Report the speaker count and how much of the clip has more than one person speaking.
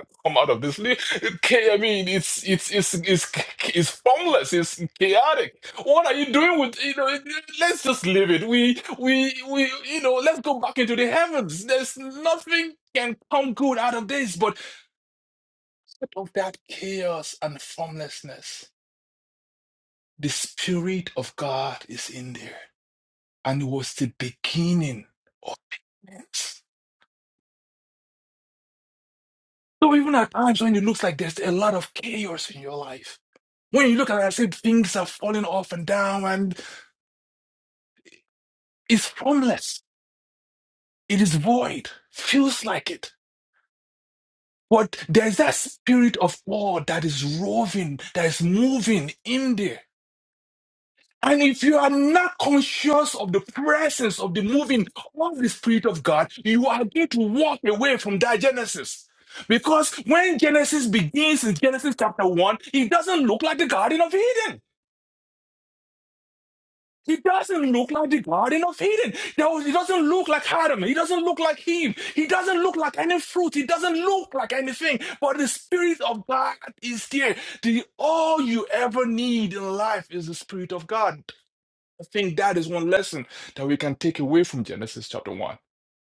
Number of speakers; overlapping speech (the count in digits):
1, no overlap